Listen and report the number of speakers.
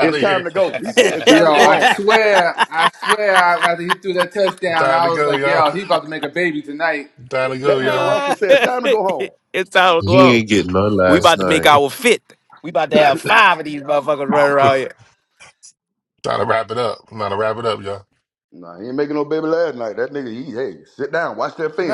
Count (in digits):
5